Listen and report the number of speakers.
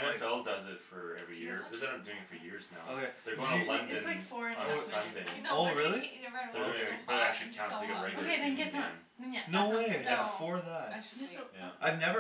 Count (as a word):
four